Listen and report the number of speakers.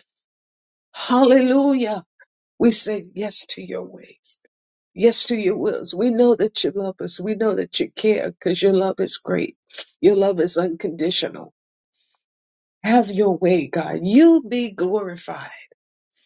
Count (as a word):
one